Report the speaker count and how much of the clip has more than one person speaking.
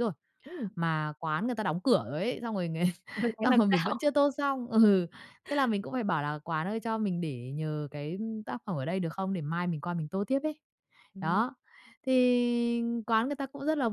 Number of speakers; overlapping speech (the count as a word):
two, about 5%